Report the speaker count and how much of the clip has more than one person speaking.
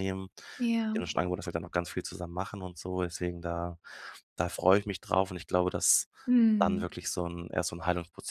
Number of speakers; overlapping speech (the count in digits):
2, about 4%